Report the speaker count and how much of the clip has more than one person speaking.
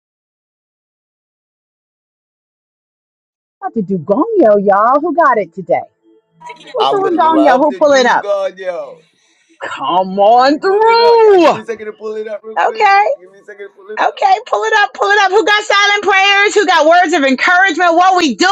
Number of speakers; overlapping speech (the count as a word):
two, about 18%